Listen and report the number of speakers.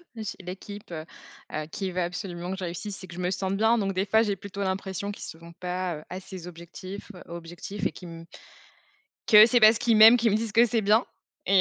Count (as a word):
one